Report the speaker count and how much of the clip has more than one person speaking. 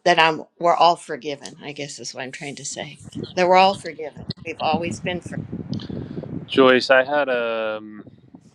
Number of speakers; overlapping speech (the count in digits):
2, no overlap